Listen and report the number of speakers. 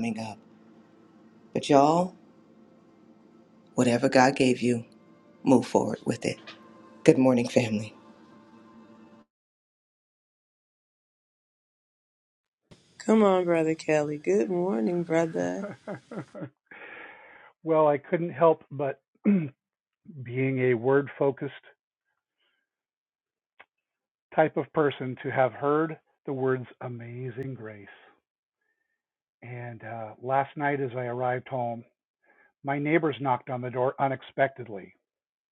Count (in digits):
3